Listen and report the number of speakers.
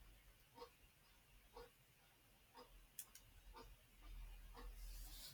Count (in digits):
0